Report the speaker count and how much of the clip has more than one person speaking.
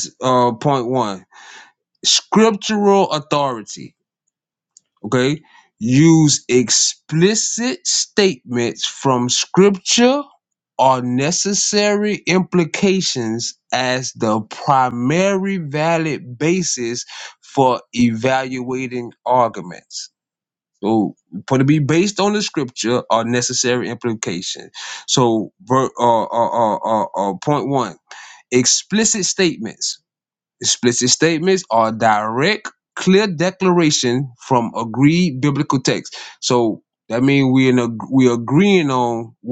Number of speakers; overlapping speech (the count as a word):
one, no overlap